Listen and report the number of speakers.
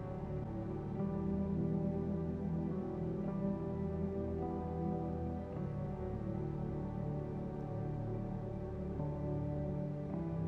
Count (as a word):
zero